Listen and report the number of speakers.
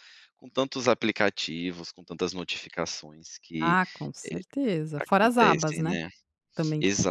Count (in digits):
2